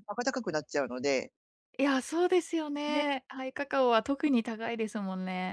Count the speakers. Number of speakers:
two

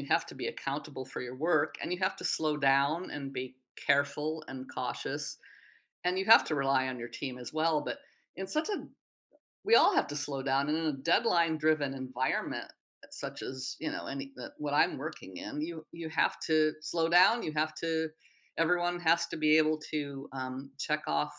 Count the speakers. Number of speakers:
one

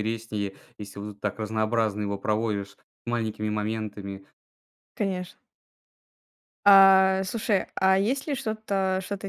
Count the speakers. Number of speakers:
two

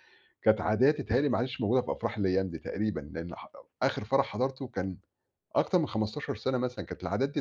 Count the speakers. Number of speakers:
one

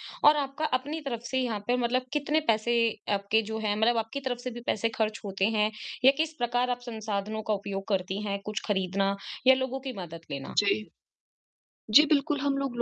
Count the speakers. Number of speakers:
two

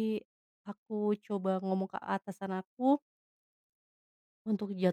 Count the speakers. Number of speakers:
one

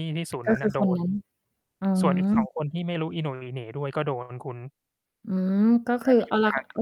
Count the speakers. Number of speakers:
two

